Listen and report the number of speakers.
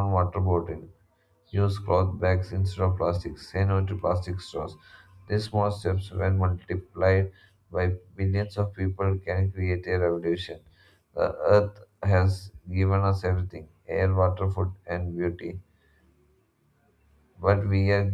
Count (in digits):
1